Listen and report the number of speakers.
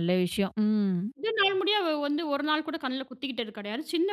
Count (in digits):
2